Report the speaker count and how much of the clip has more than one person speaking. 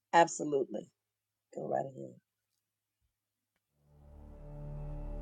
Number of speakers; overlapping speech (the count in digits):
1, no overlap